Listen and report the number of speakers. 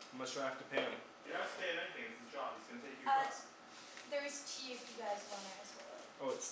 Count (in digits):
3